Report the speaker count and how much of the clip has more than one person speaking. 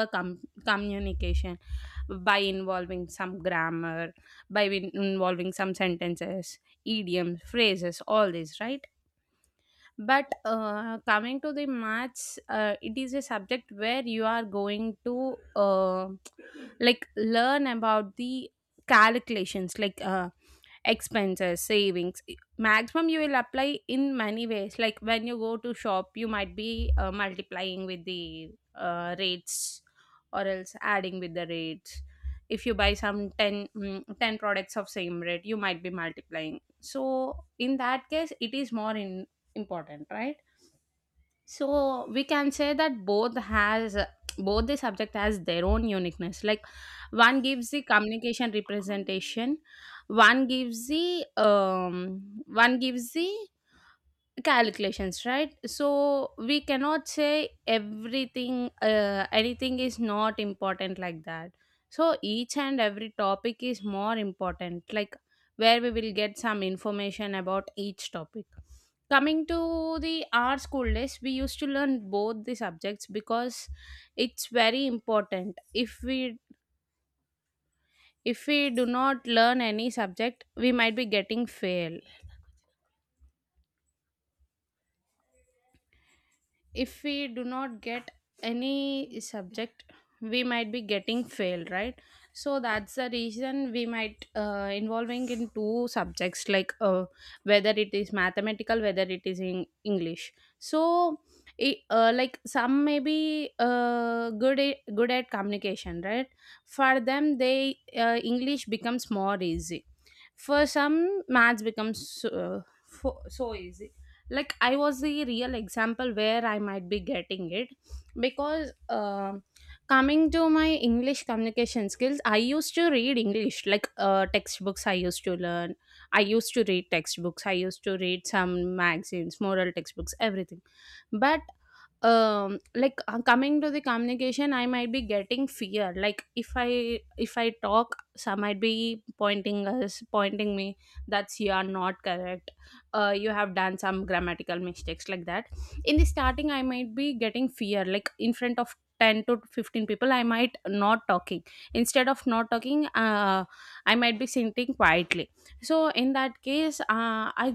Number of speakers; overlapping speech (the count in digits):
1, no overlap